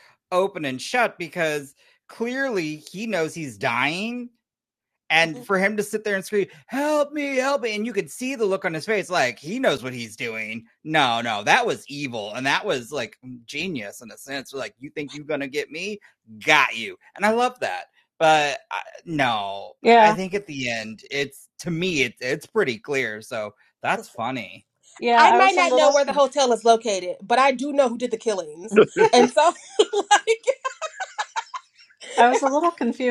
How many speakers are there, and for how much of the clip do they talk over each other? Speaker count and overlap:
3, about 6%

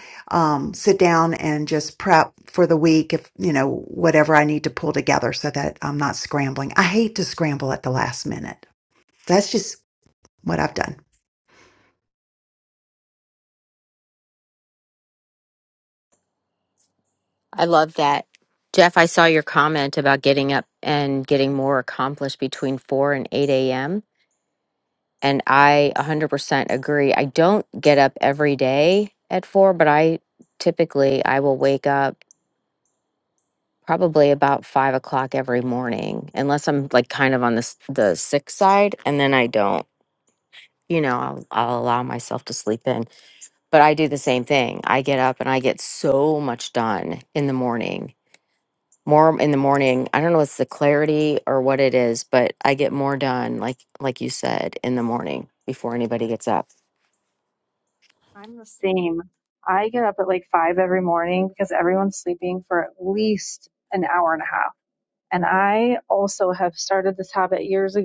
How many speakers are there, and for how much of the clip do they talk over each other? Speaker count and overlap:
3, no overlap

